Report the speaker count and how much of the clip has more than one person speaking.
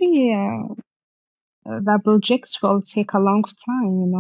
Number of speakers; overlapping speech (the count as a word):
one, no overlap